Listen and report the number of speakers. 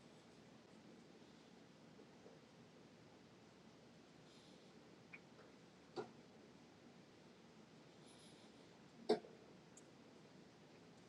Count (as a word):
zero